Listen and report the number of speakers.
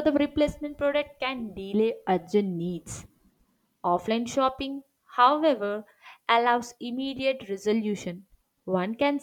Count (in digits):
1